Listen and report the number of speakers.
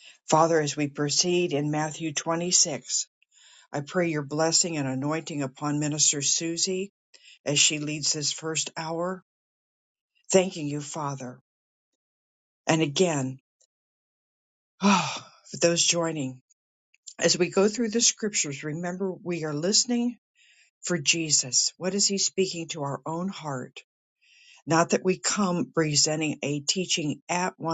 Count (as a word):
one